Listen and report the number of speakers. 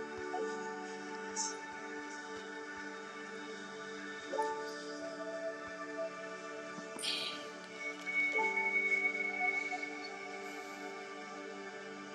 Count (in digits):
0